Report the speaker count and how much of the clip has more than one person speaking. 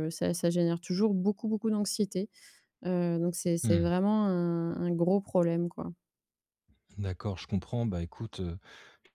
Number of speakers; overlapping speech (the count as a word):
two, about 2%